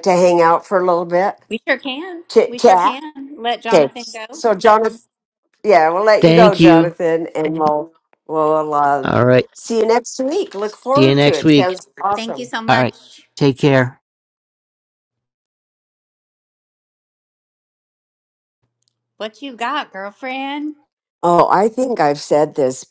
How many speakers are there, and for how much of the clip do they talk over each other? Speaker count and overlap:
3, about 13%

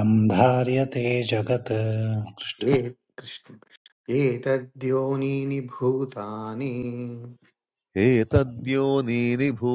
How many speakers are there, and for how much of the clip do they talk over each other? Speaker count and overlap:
3, no overlap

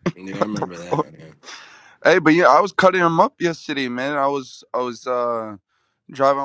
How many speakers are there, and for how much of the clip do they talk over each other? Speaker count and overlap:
2, no overlap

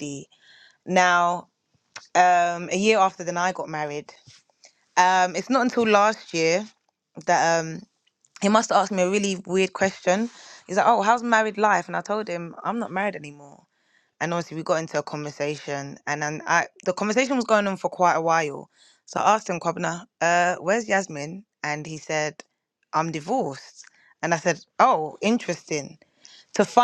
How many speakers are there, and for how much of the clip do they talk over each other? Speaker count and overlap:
1, no overlap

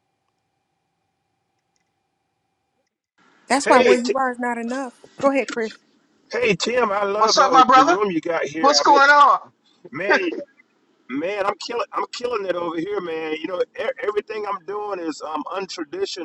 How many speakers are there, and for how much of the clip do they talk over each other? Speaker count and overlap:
3, about 11%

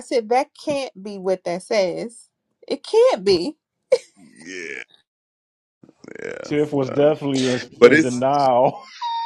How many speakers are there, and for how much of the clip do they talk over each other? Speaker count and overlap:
3, about 11%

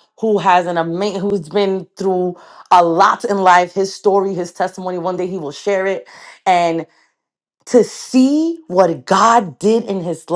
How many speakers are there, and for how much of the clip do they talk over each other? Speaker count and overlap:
1, no overlap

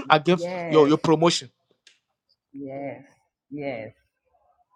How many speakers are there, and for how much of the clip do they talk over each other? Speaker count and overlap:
2, about 8%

